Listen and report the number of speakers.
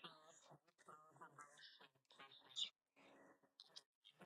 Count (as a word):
zero